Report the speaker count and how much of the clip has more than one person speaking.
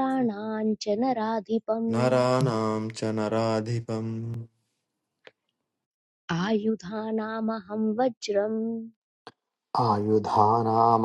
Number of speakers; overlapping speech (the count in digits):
3, about 1%